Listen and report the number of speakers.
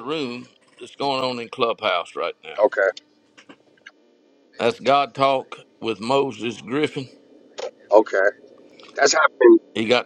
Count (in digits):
2